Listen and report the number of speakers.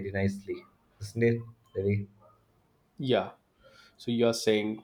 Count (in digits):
2